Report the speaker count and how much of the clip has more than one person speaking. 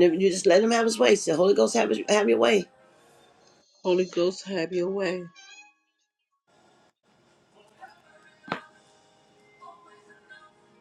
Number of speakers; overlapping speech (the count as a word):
two, no overlap